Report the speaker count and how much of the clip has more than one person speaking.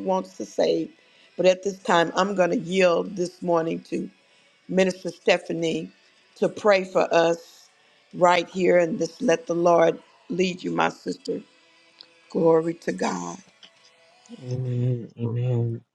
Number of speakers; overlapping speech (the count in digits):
2, no overlap